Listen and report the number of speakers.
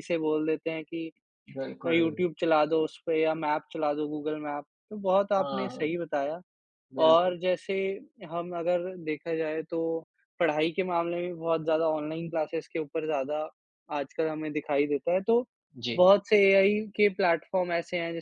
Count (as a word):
two